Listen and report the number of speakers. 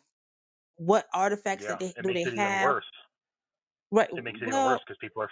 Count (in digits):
2